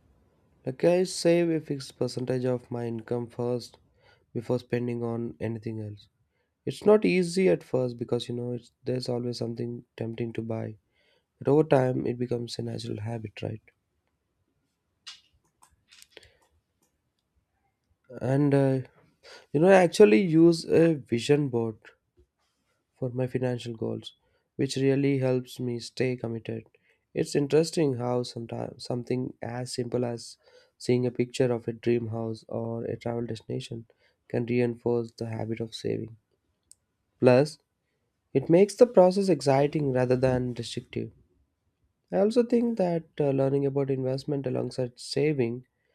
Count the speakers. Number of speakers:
one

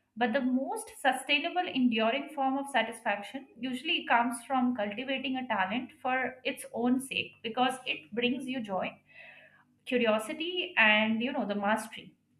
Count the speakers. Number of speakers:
one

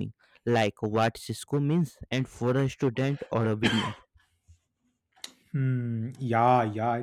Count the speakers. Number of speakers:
two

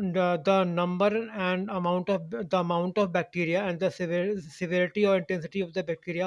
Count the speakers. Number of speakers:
one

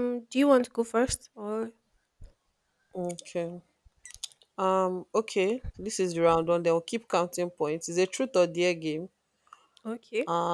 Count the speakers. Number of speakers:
two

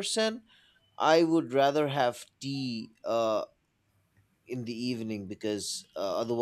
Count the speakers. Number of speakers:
one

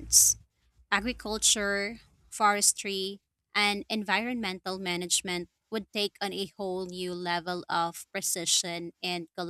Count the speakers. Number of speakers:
one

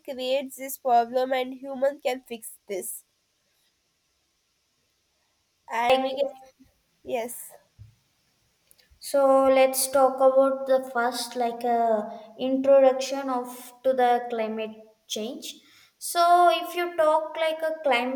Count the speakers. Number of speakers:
two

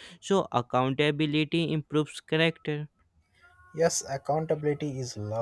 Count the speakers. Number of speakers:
two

